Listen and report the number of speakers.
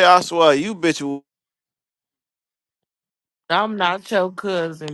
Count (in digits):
2